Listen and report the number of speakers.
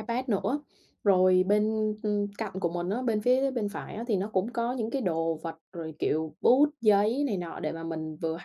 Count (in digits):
1